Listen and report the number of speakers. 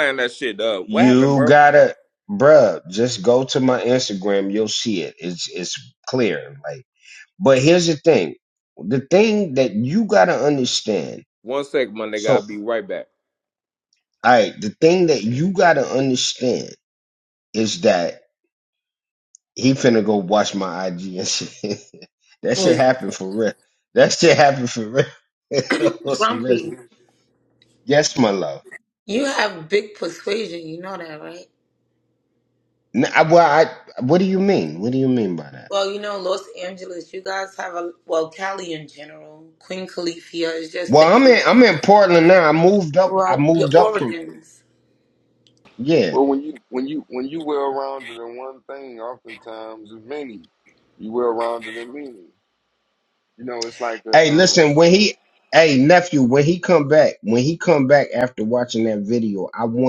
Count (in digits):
4